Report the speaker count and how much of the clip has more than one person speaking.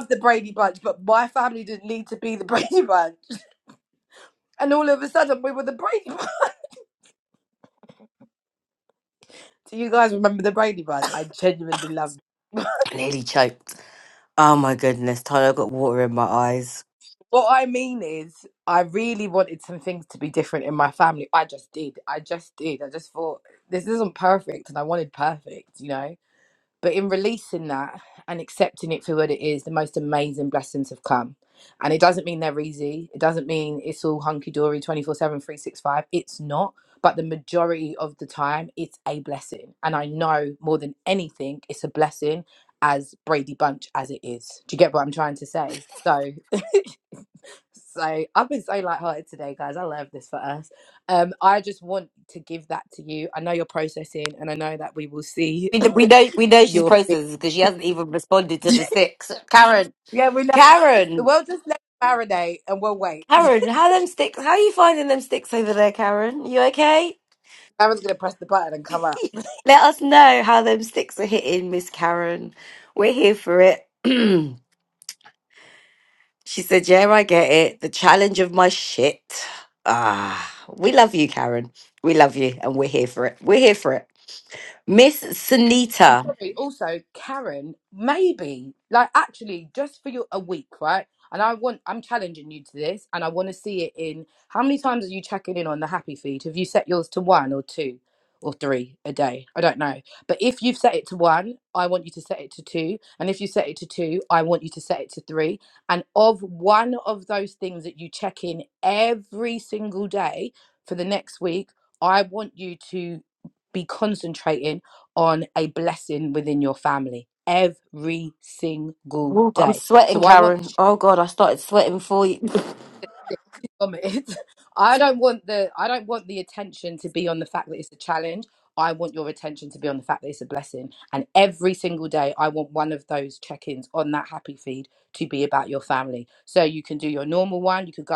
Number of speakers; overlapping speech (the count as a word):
two, about 1%